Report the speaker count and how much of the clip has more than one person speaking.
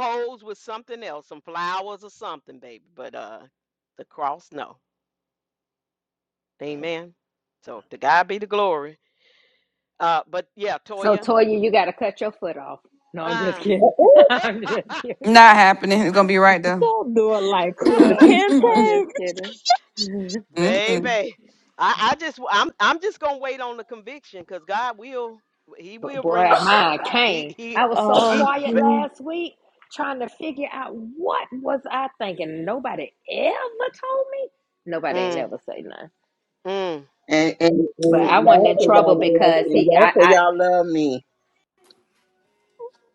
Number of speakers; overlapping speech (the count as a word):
five, about 17%